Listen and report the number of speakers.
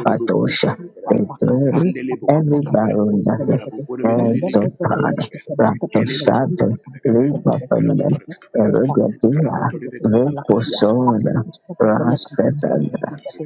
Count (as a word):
three